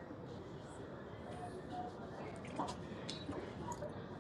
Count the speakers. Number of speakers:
0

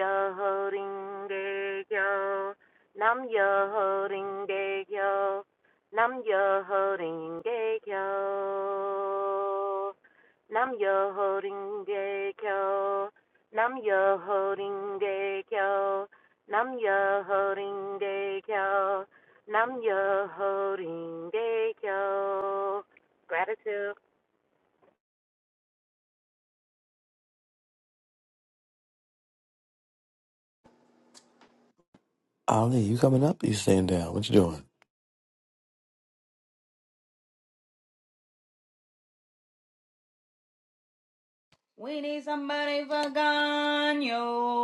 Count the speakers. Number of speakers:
3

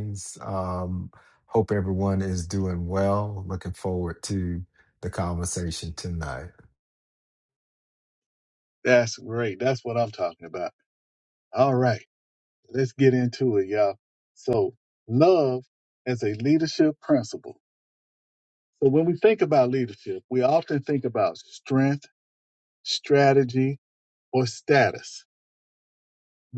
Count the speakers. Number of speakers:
2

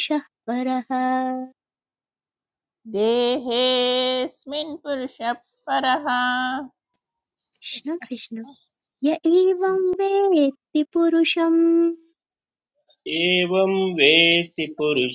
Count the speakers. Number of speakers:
3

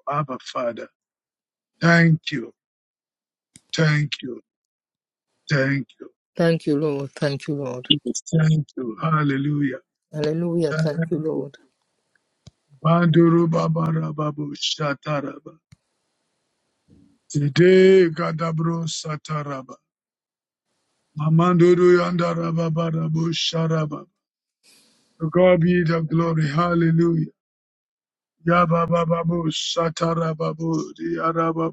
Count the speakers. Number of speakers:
2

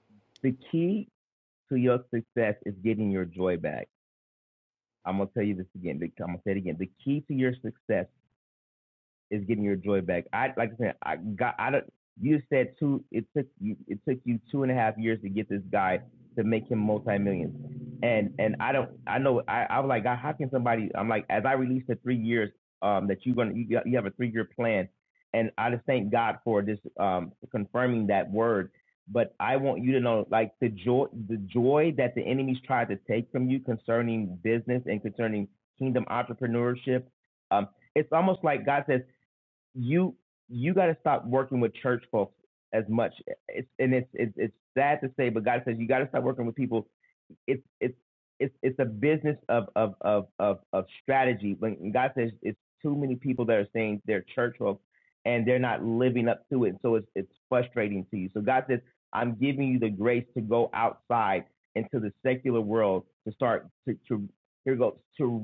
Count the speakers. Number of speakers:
1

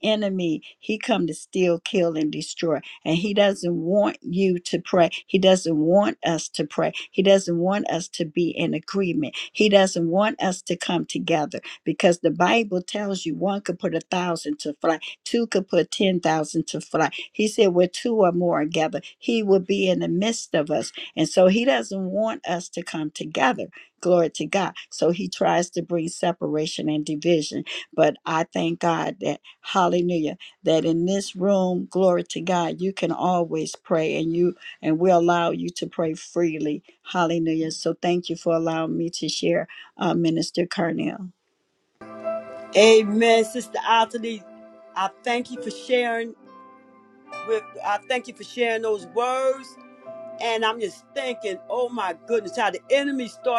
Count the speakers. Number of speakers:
2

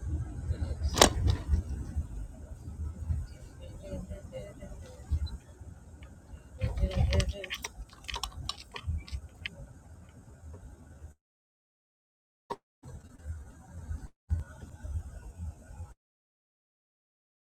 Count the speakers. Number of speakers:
0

